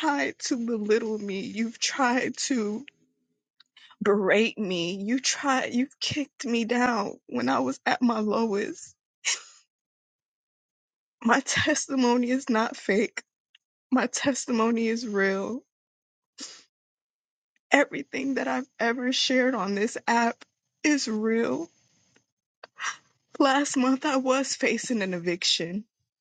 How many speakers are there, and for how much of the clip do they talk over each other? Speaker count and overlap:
1, no overlap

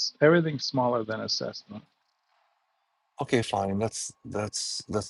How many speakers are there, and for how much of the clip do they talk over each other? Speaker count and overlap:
2, no overlap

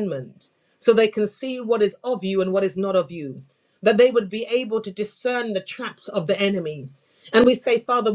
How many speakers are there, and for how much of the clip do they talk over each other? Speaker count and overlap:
1, no overlap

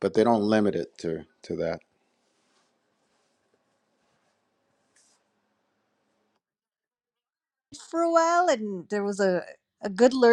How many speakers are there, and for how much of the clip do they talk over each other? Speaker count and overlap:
2, no overlap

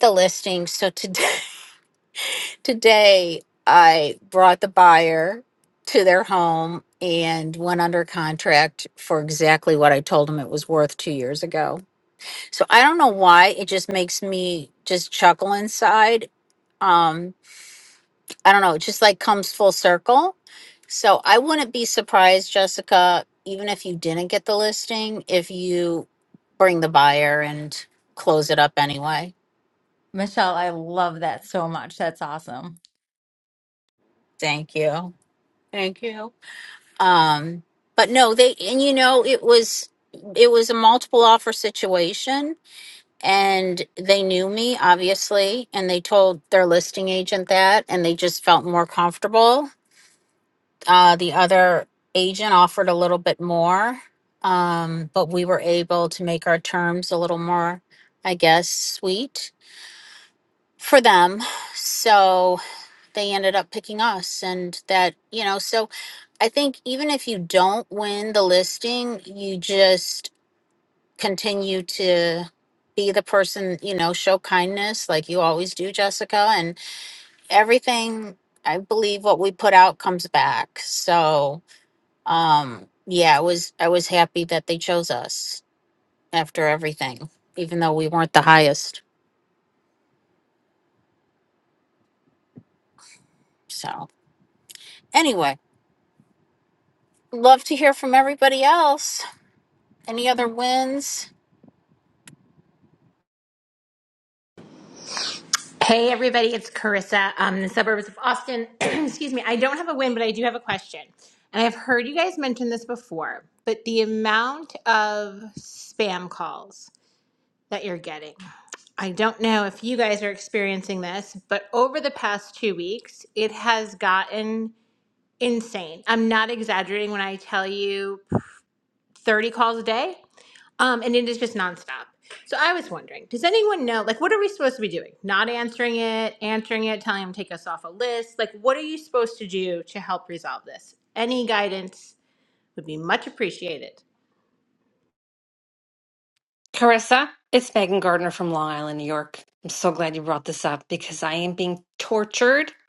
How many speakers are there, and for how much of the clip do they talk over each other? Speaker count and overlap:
4, no overlap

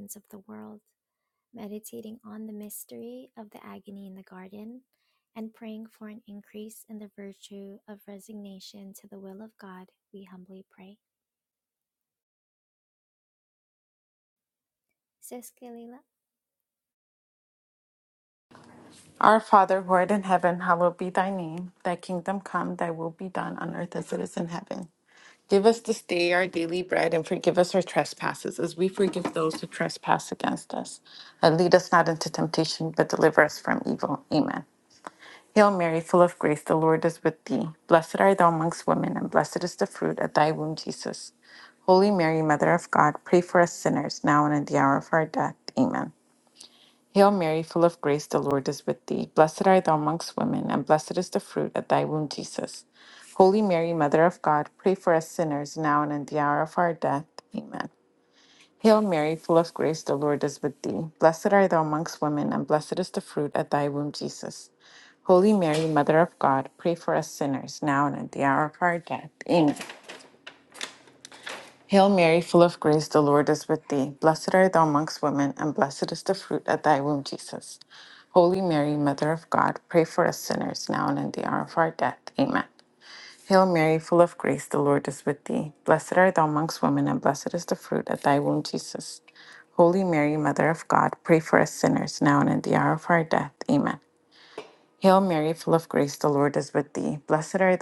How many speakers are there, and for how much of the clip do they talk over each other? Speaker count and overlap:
2, no overlap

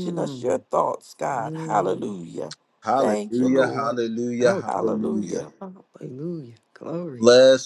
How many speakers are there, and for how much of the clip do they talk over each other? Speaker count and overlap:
3, about 42%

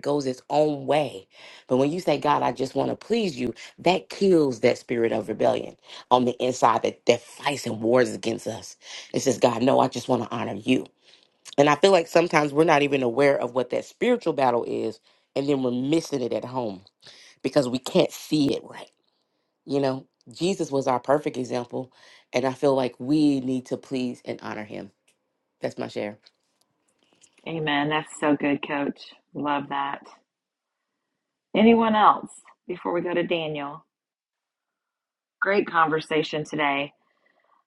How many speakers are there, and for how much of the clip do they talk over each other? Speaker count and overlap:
2, no overlap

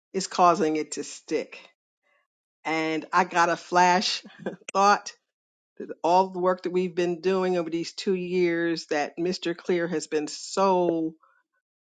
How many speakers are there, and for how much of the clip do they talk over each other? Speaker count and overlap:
1, no overlap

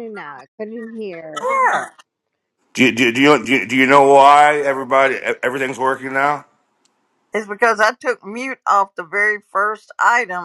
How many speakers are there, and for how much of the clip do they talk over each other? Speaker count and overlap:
3, about 1%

